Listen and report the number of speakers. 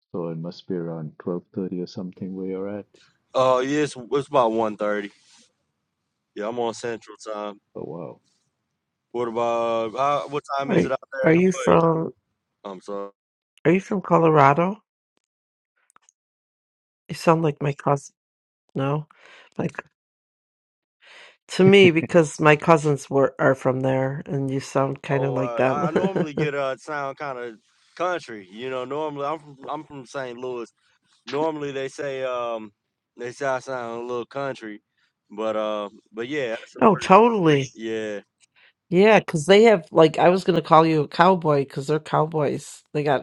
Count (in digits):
3